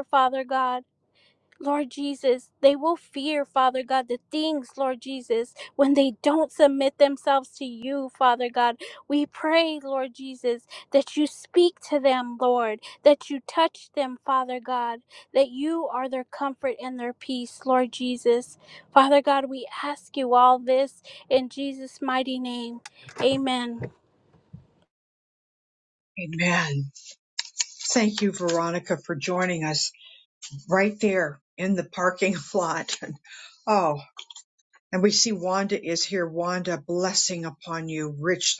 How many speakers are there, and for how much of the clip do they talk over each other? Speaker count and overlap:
two, no overlap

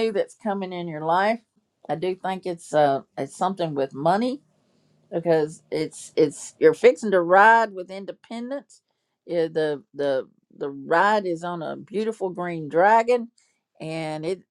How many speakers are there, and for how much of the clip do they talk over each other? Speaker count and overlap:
one, no overlap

